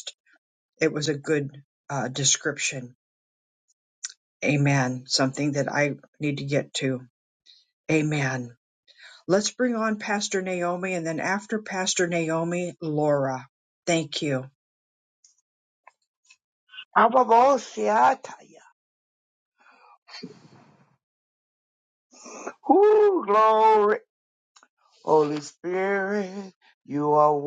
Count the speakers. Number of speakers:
two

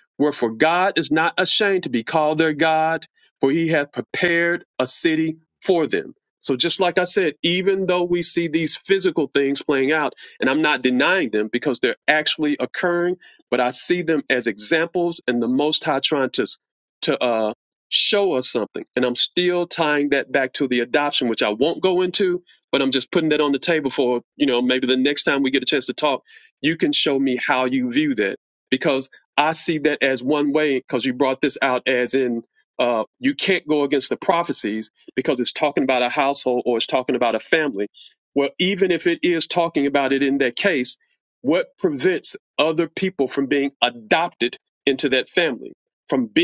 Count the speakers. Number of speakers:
one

